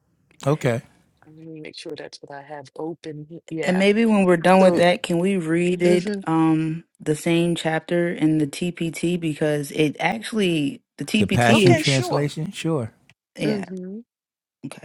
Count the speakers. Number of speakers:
3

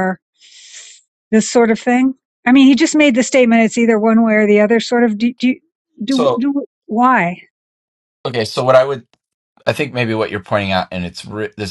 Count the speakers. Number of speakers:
2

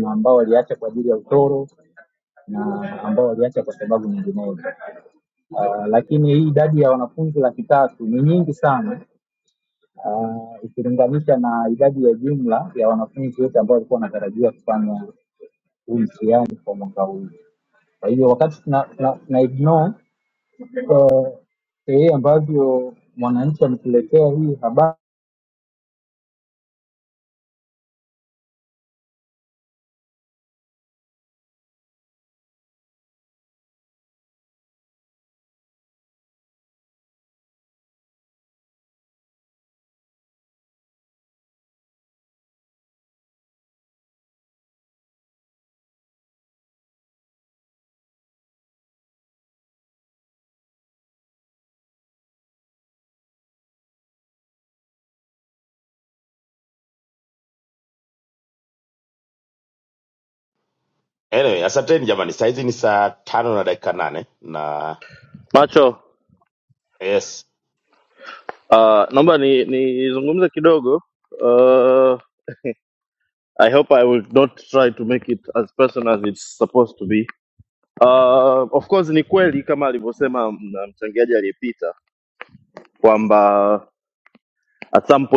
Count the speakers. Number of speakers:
3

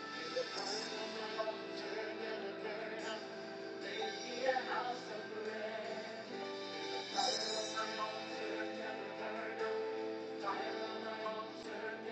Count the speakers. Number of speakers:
0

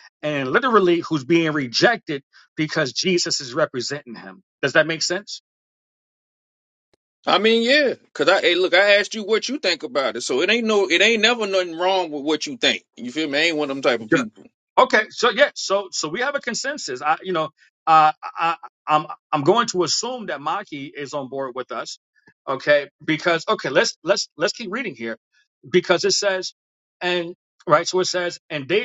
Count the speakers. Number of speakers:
2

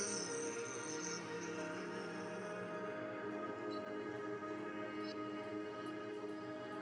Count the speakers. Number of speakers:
0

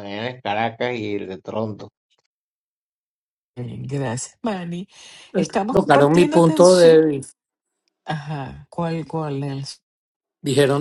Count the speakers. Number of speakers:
3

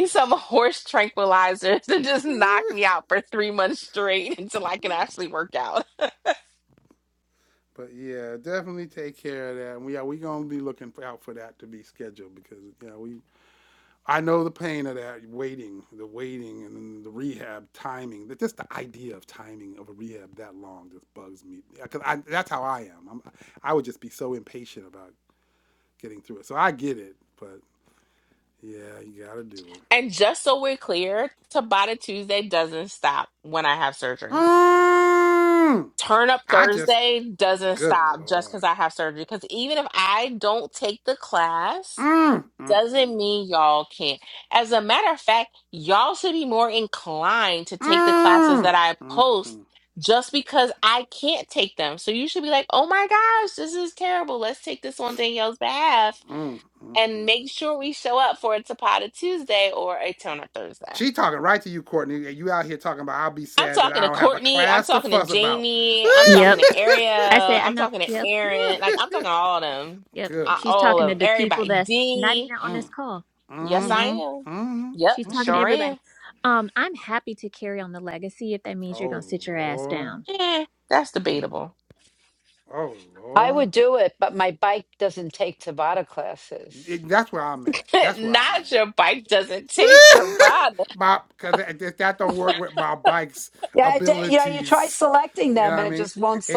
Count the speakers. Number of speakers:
4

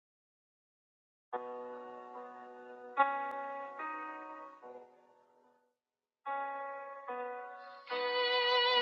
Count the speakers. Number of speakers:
0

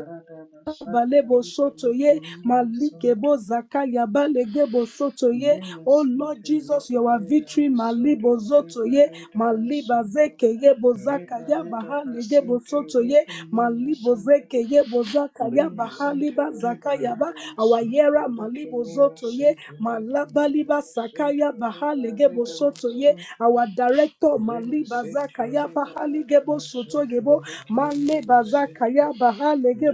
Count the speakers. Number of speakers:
2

